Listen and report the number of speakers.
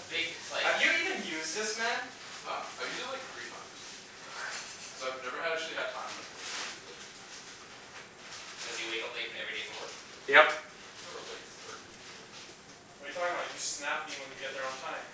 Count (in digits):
4